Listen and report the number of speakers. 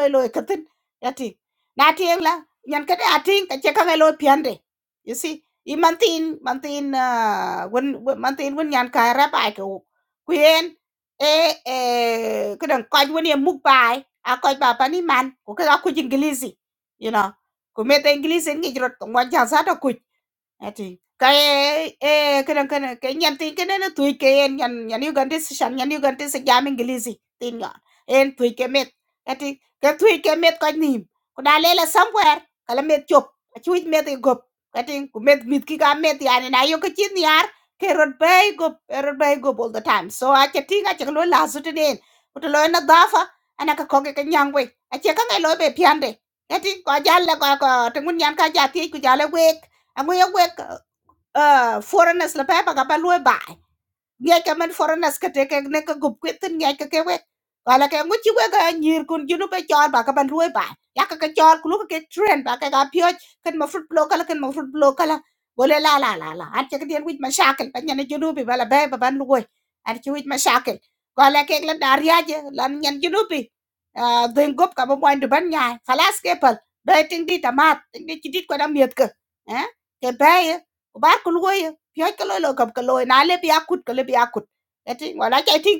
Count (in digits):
1